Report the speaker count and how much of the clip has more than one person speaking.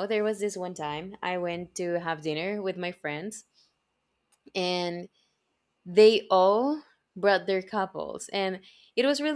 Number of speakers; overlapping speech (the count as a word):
one, no overlap